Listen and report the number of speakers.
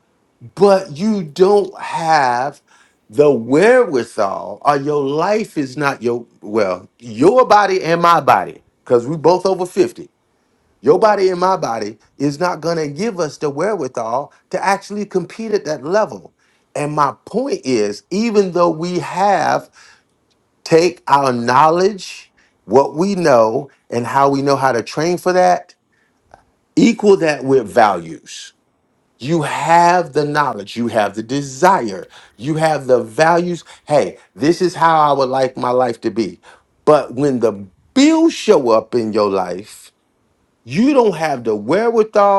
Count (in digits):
1